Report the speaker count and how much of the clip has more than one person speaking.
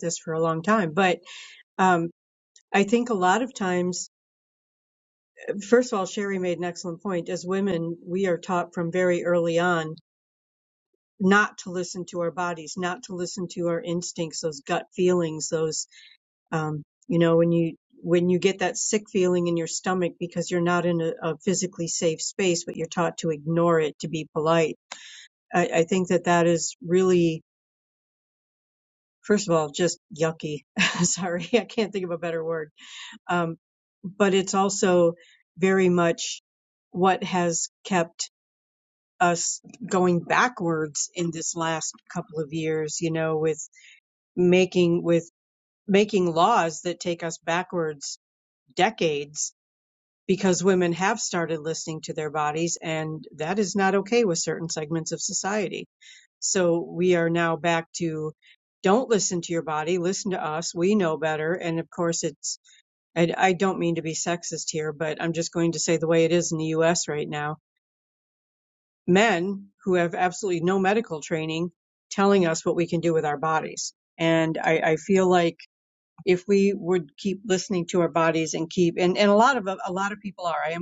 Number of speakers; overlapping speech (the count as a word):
one, no overlap